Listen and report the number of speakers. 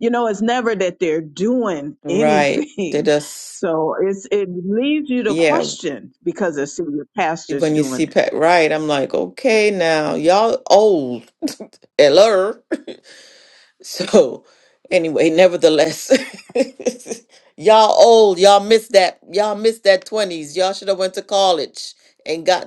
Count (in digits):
2